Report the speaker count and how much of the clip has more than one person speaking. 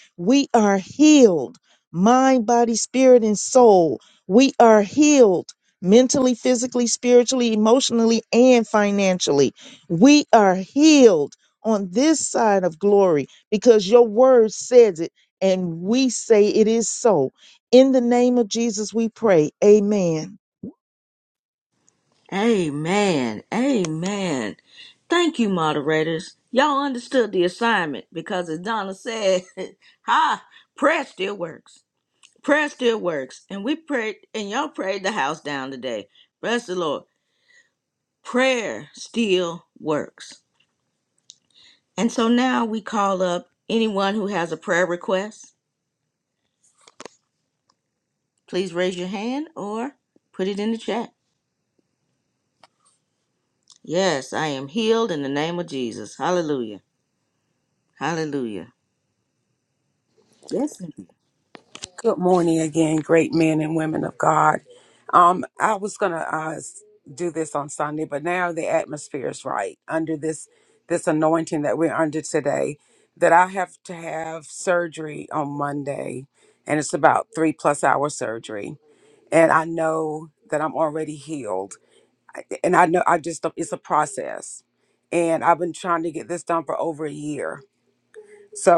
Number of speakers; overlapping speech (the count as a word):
three, no overlap